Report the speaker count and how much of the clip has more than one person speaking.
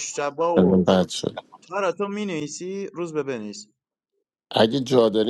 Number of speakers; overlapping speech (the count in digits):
2, about 6%